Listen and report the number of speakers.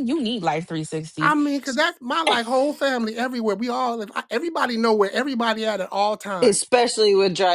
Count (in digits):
3